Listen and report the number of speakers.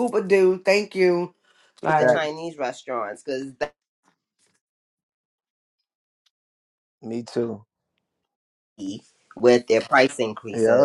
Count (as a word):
three